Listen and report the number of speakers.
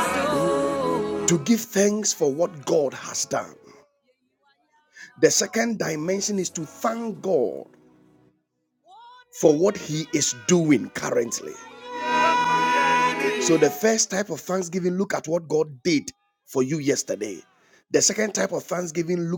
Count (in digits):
1